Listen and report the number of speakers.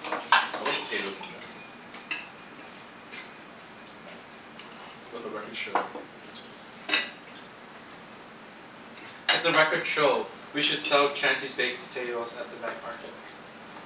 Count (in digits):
2